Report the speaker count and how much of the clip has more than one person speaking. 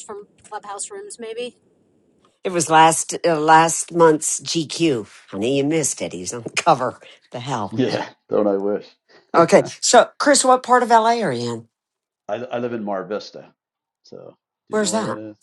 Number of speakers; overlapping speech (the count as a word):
three, about 3%